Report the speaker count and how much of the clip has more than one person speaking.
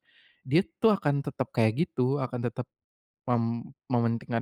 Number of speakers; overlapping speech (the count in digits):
1, no overlap